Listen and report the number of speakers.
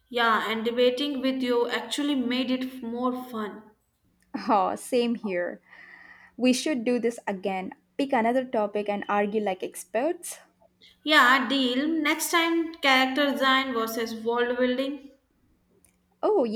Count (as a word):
two